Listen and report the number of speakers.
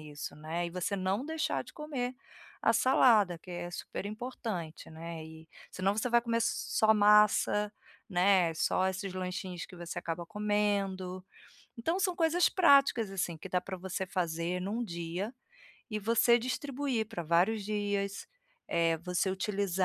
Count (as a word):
one